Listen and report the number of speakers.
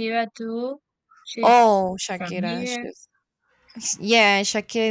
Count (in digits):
2